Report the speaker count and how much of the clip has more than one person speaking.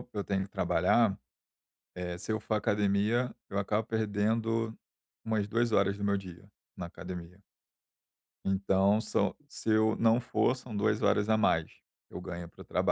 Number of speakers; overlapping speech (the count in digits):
1, no overlap